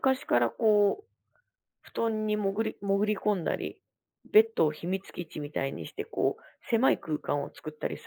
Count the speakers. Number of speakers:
1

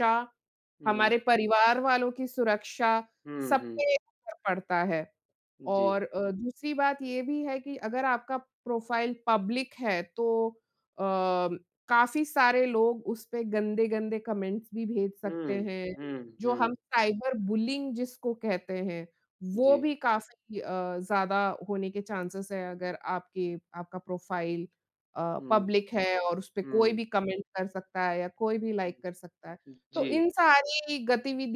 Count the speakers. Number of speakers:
2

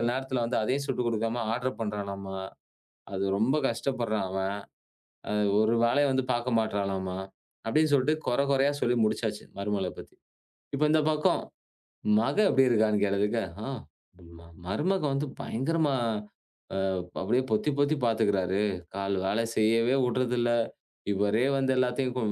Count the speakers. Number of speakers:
1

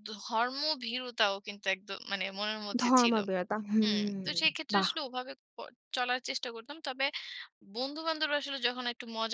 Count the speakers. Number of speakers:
2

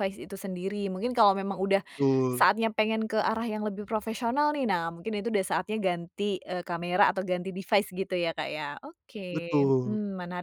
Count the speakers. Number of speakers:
2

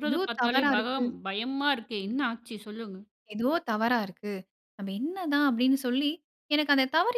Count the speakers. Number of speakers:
2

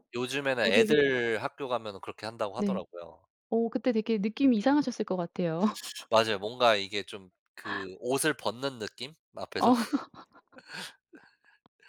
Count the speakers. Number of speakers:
2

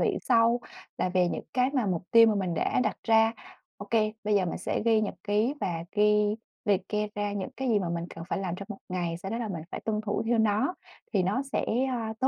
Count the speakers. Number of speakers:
1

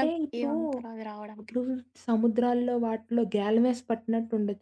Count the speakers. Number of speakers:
2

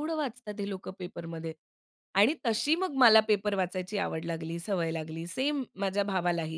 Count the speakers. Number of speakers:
1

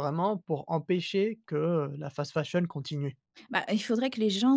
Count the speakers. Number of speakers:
2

